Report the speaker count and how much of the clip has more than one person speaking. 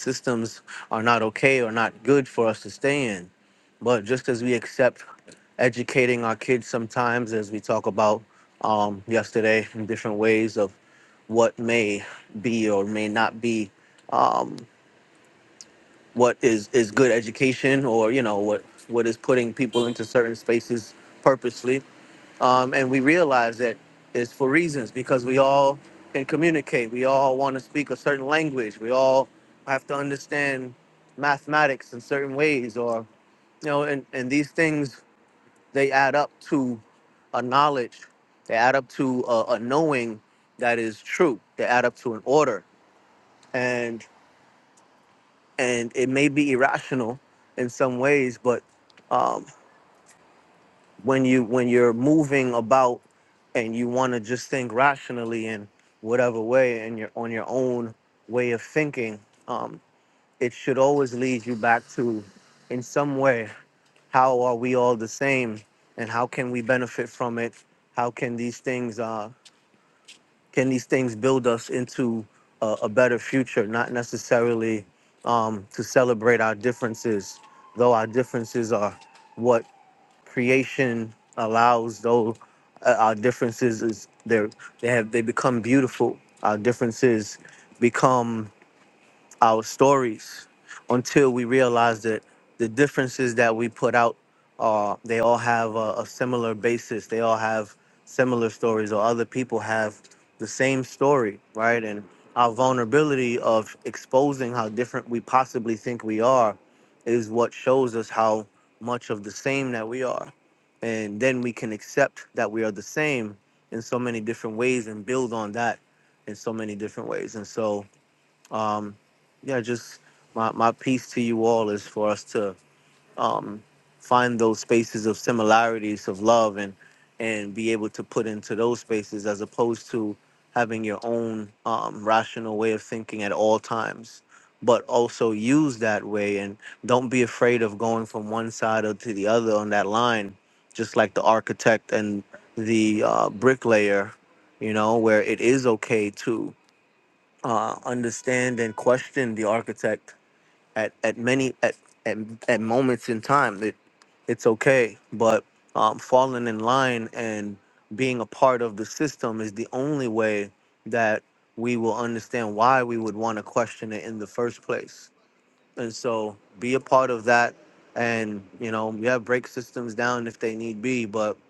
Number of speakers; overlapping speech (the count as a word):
one, no overlap